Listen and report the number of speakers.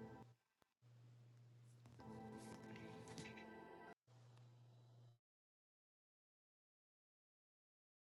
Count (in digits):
0